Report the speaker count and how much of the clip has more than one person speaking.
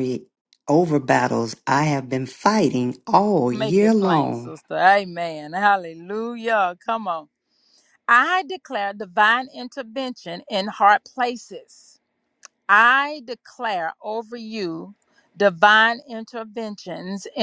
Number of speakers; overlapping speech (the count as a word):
two, about 6%